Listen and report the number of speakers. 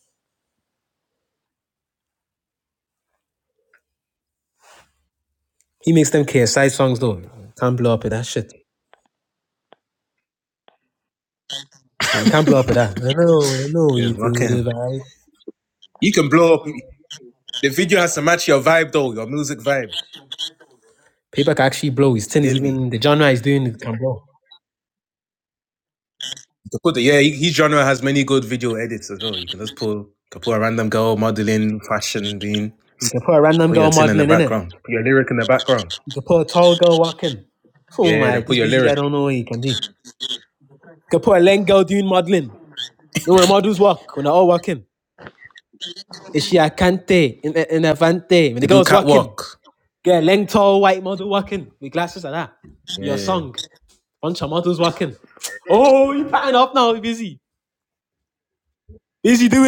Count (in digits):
2